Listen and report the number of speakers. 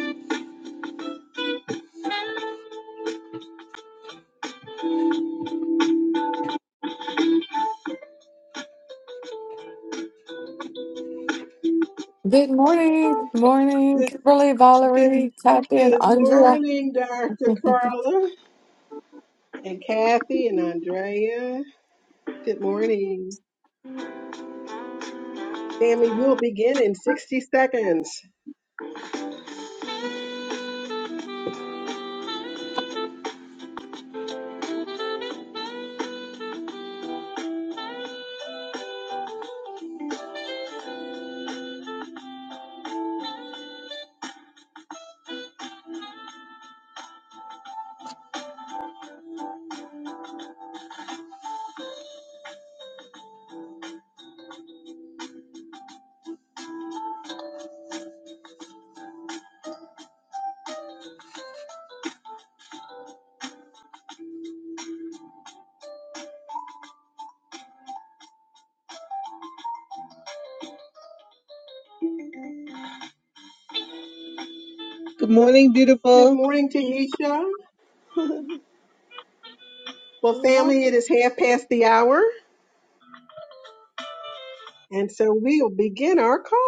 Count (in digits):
3